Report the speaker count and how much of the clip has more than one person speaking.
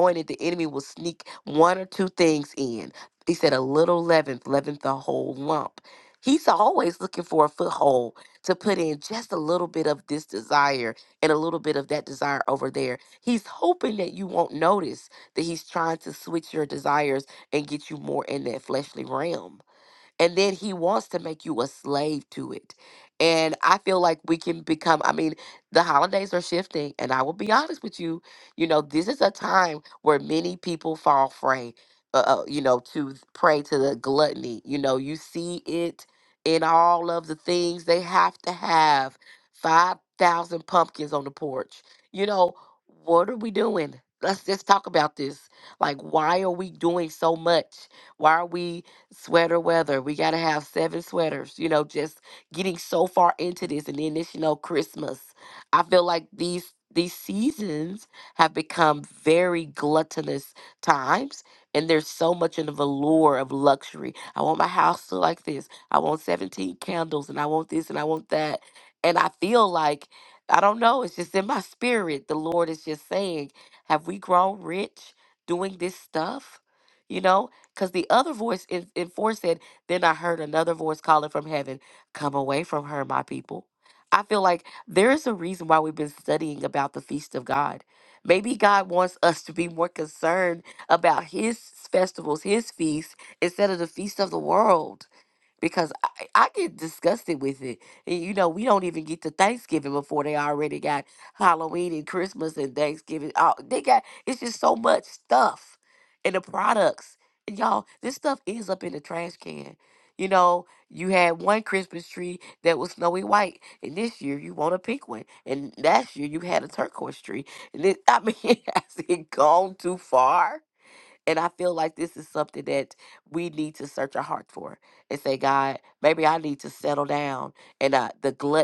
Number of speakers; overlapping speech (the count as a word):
one, no overlap